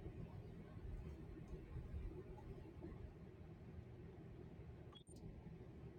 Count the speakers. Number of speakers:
zero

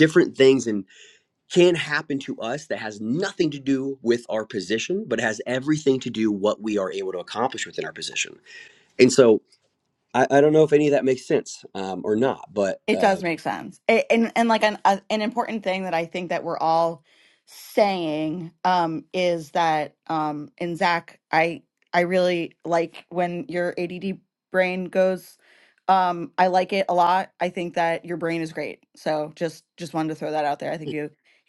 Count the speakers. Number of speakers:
two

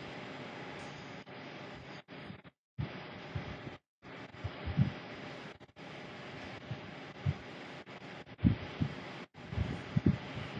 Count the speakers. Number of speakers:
zero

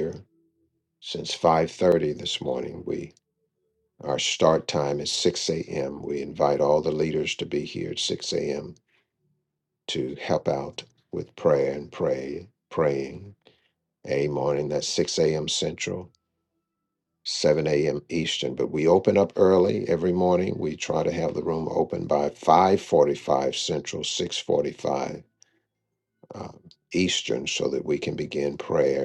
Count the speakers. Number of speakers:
one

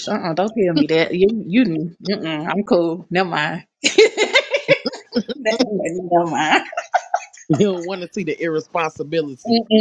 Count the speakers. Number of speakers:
two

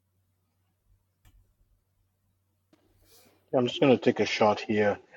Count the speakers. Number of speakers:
one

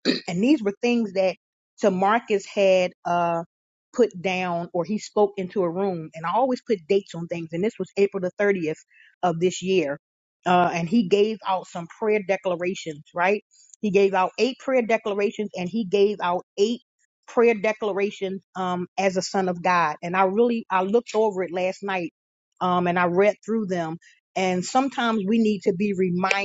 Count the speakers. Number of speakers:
one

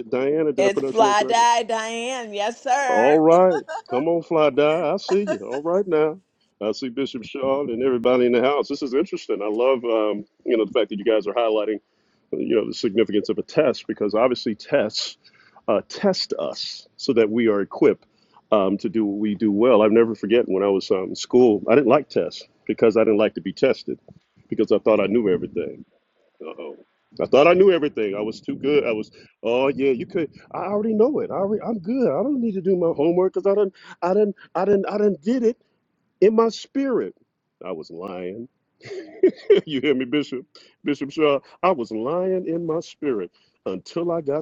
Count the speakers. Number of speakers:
two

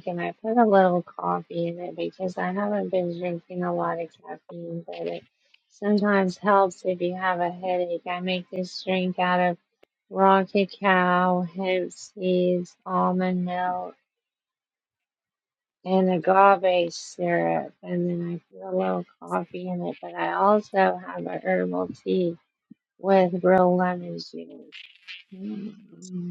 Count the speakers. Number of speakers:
one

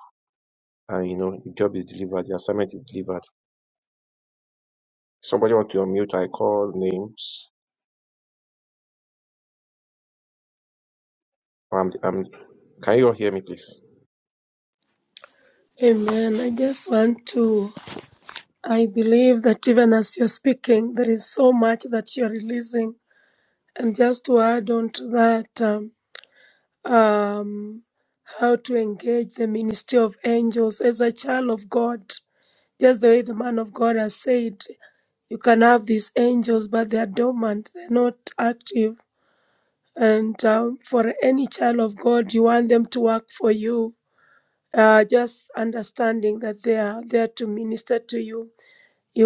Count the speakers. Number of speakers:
two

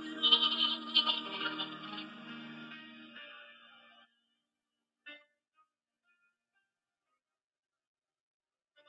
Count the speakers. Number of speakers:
zero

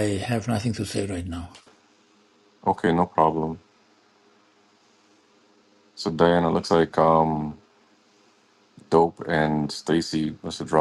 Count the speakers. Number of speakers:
two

